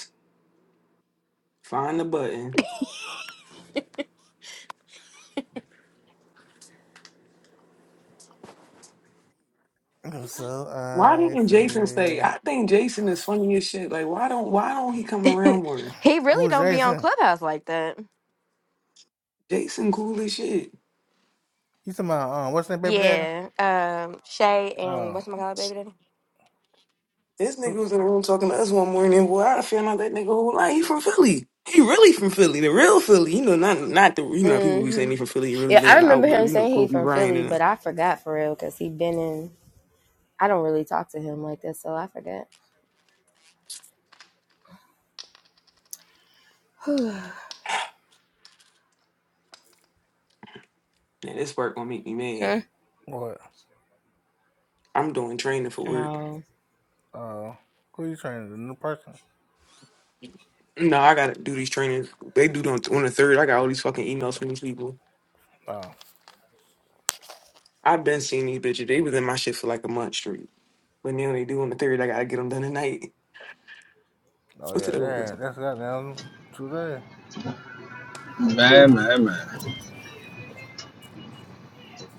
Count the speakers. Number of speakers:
4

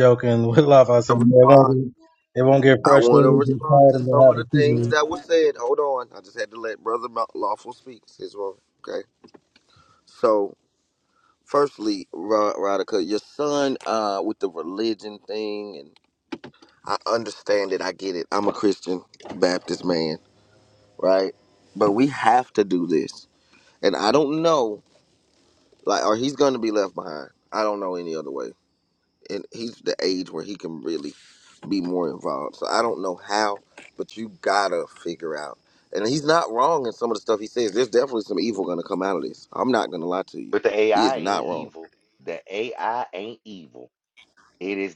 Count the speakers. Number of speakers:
3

